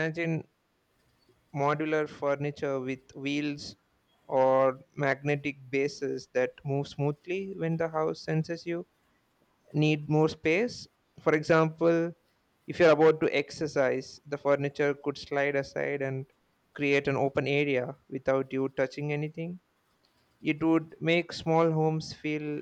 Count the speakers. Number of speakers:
1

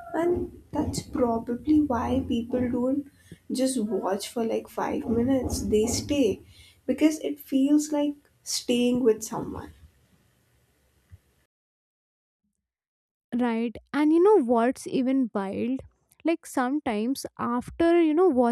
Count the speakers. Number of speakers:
2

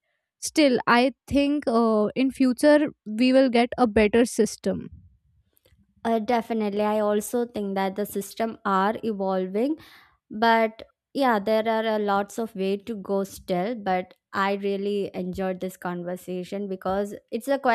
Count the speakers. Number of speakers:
2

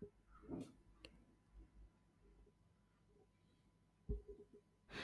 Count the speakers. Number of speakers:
0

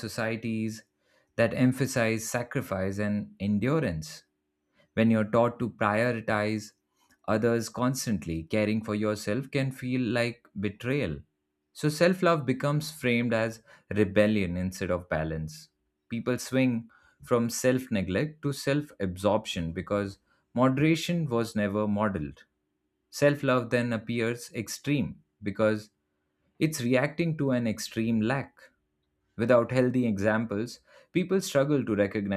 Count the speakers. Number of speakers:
1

